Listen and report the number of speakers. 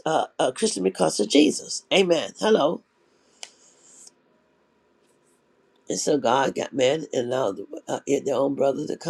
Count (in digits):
1